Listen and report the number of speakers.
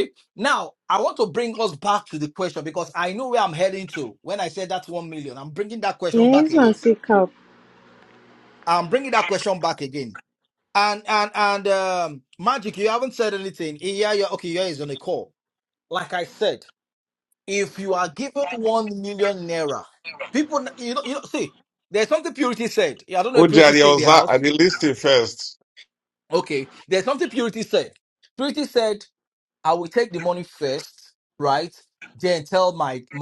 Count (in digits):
3